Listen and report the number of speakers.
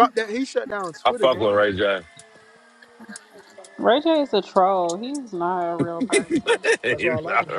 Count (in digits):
3